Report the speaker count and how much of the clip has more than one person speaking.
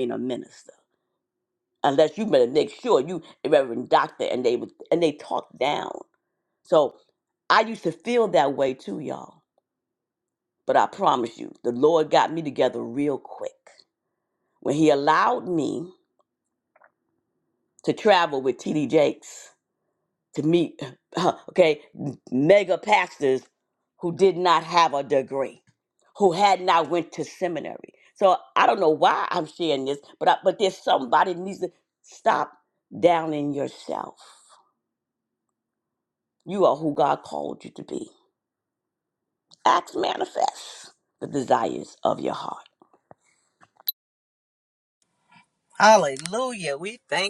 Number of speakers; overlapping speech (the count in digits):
2, no overlap